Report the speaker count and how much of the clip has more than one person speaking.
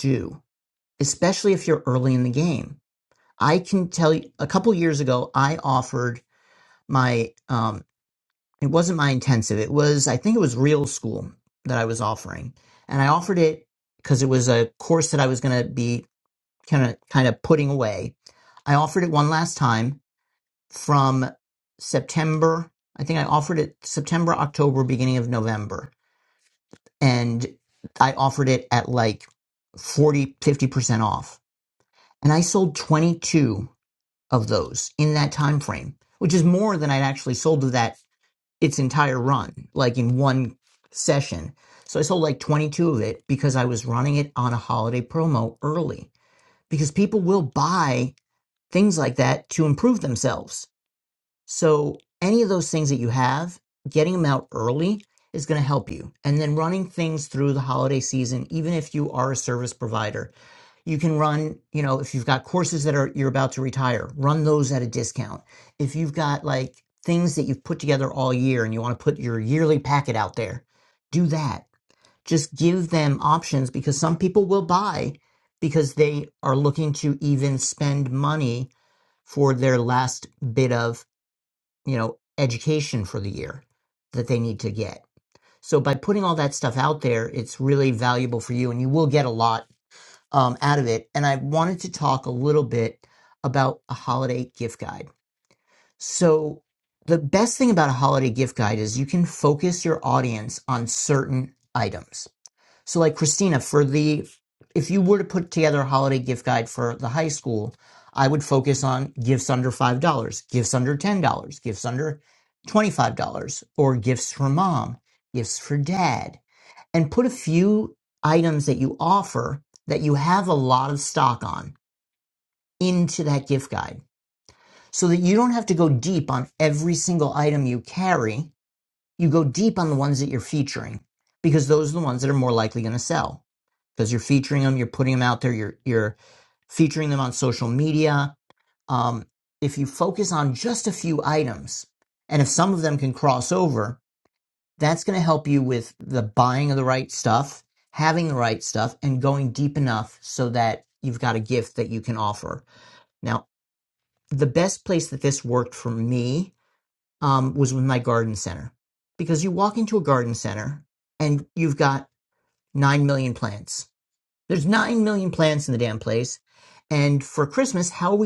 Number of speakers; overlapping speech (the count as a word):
one, no overlap